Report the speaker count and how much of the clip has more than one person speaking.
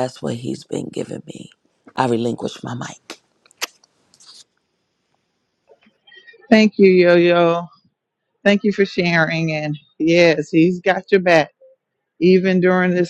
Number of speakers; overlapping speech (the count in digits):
2, no overlap